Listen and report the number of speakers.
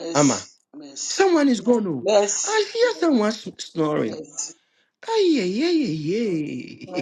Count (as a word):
two